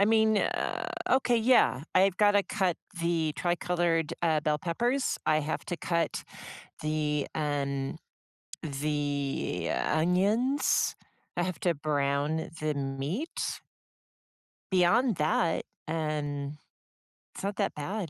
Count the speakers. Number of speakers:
1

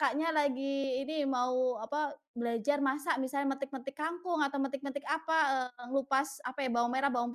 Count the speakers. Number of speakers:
1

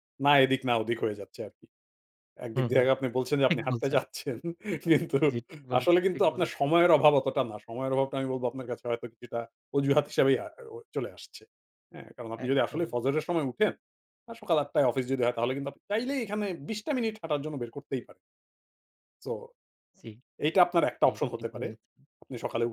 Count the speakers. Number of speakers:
2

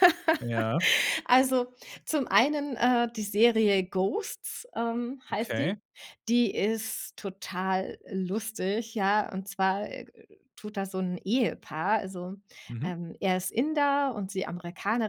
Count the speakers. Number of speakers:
2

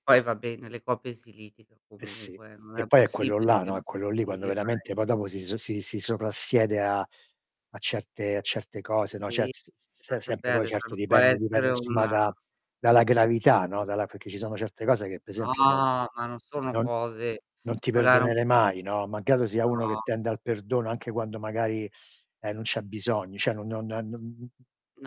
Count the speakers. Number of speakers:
2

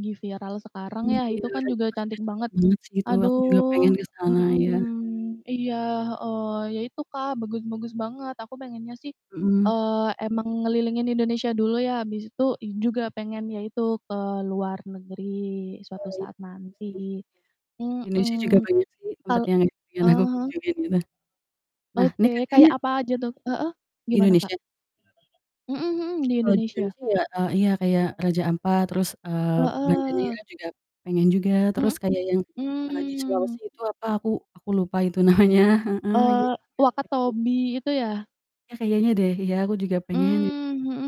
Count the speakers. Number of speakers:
2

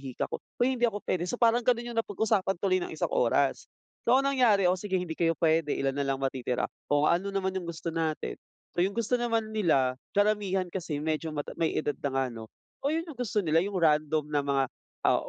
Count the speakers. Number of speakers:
1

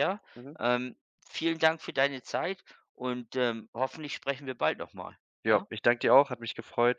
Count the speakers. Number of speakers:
2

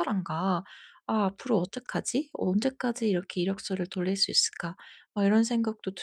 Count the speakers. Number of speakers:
1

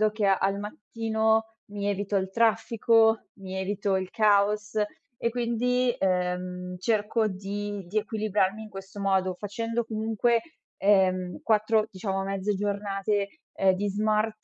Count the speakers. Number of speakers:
1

